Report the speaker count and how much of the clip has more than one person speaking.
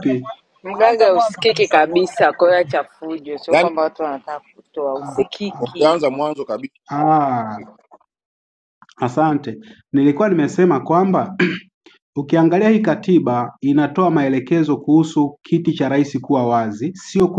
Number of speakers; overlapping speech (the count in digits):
3, about 7%